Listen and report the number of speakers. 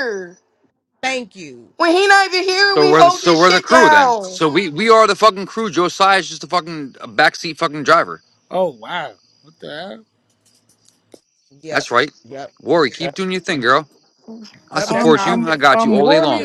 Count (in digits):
4